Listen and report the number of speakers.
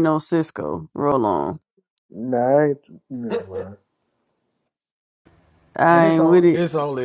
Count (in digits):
3